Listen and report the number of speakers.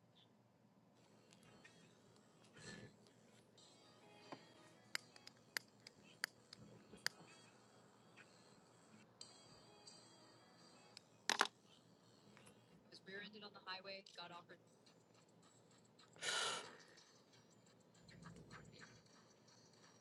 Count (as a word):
zero